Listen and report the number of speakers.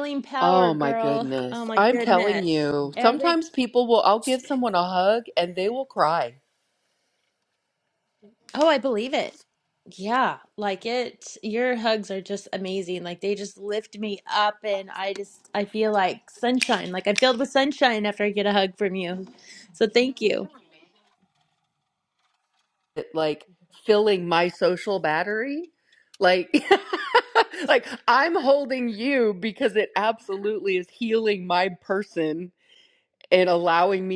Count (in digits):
2